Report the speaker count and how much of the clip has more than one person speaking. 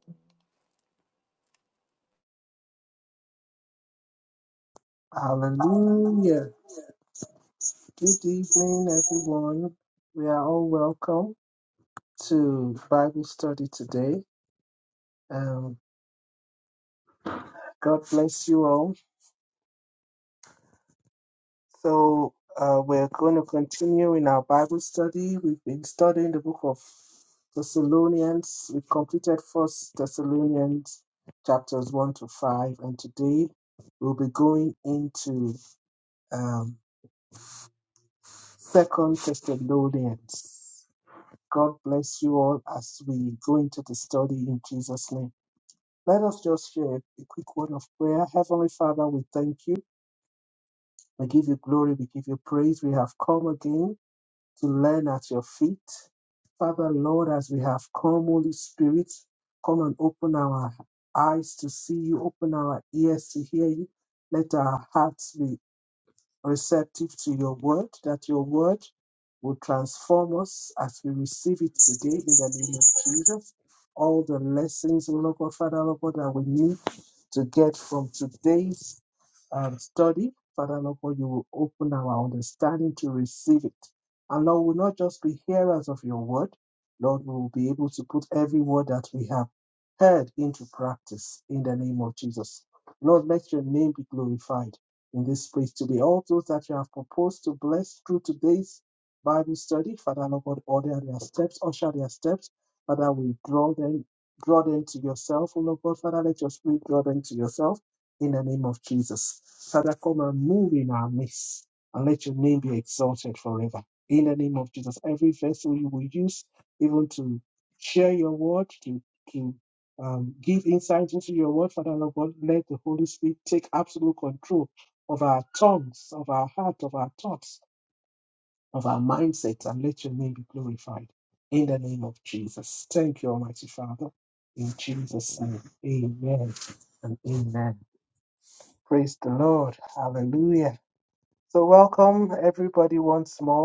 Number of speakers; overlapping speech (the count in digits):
1, no overlap